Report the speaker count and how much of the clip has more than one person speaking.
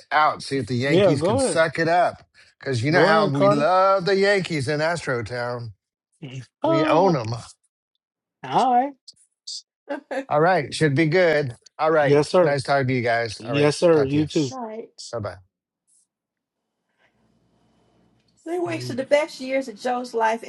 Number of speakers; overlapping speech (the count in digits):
3, about 16%